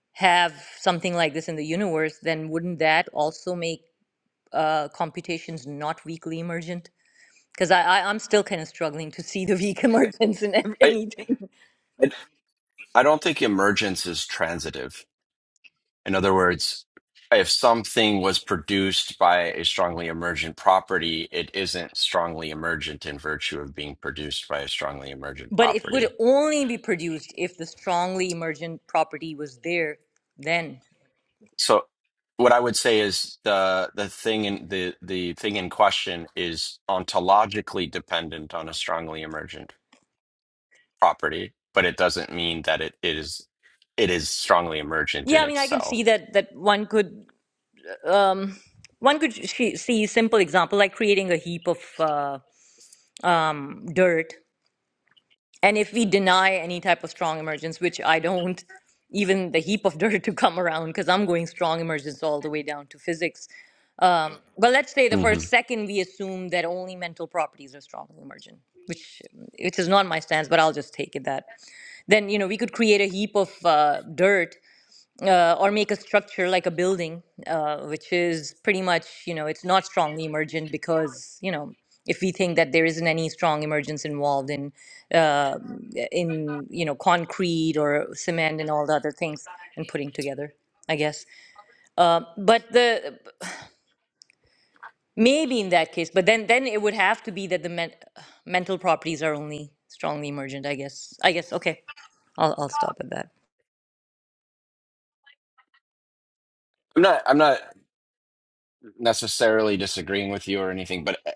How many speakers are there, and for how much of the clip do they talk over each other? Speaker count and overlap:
2, about 2%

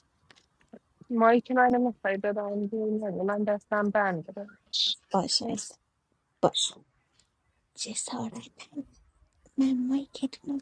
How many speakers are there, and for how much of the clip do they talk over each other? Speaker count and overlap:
2, no overlap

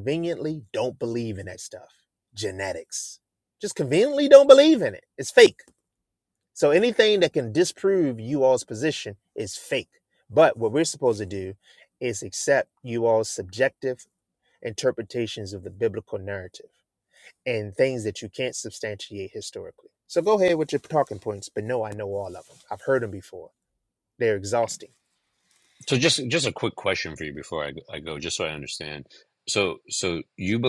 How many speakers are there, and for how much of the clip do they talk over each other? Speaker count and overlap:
2, no overlap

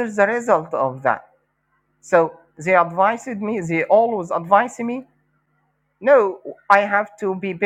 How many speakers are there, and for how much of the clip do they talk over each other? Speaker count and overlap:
1, no overlap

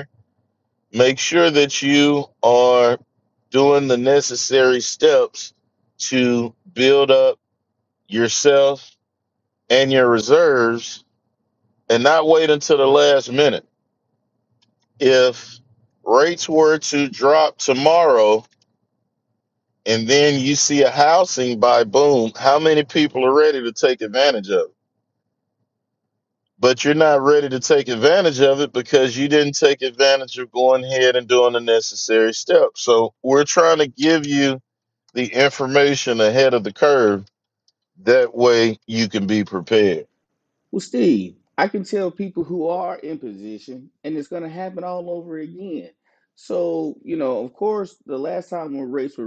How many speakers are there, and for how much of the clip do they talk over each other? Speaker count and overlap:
2, no overlap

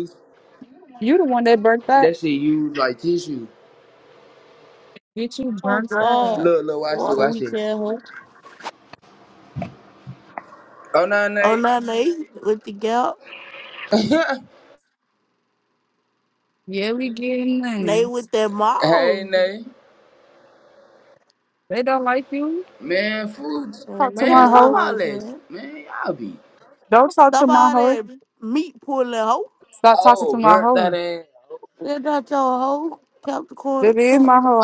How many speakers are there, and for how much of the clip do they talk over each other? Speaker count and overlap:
3, about 19%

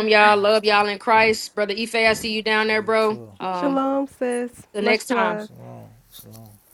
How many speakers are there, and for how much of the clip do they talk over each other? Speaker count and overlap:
3, about 25%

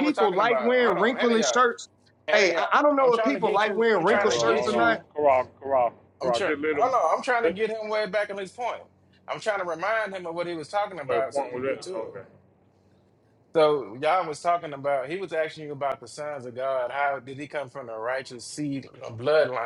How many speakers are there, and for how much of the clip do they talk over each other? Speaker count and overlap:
3, about 29%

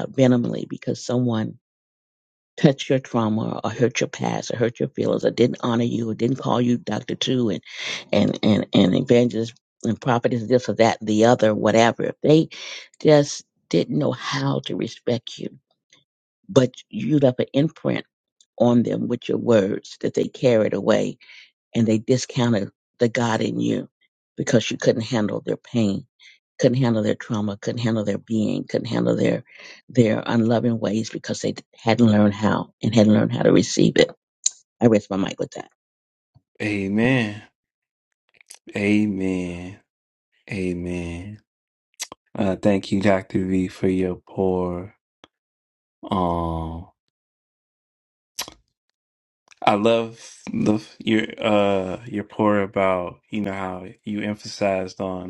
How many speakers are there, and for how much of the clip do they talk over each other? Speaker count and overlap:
2, no overlap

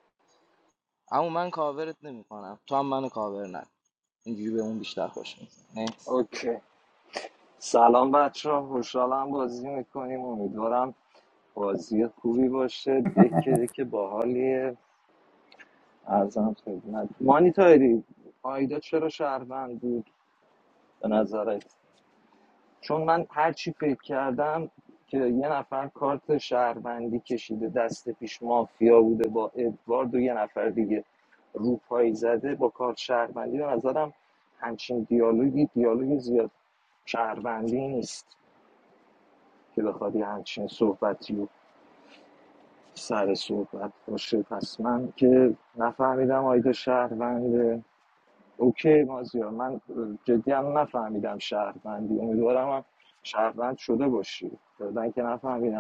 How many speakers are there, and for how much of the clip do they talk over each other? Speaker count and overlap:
2, no overlap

